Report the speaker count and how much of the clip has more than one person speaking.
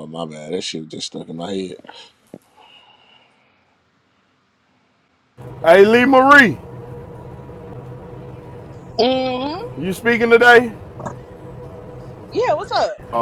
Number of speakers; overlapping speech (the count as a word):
three, no overlap